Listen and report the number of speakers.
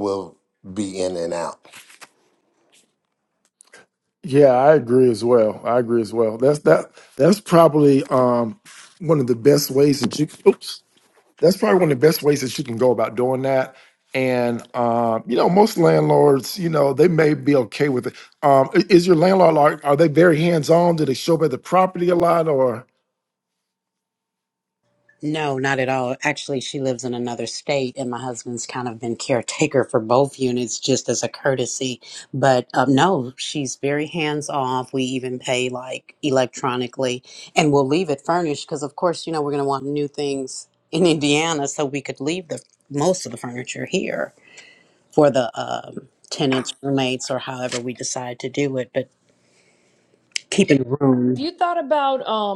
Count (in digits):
4